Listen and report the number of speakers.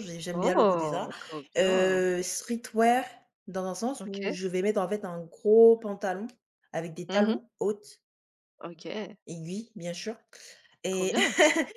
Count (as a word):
two